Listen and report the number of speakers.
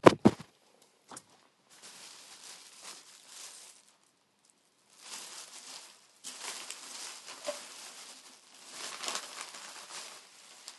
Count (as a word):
zero